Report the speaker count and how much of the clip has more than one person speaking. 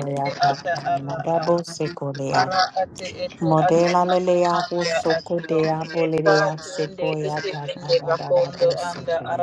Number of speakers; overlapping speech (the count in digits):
2, about 71%